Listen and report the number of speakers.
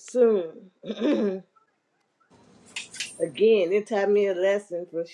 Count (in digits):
1